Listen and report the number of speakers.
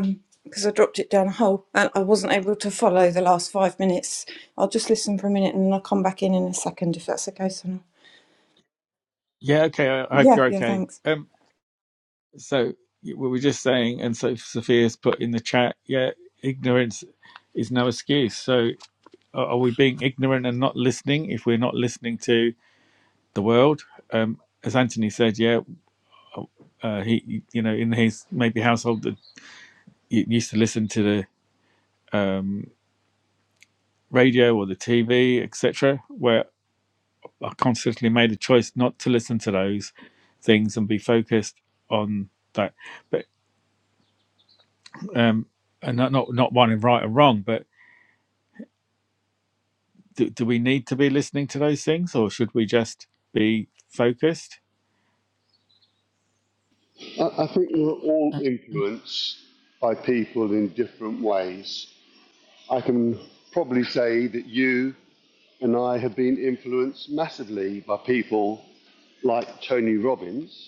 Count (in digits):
3